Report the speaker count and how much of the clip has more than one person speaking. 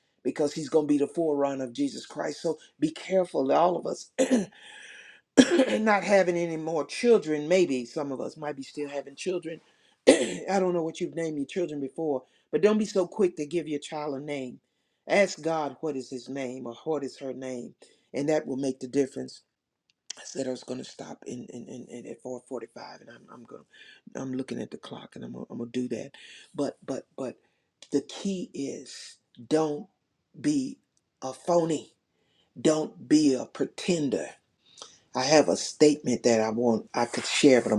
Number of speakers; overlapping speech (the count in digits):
1, no overlap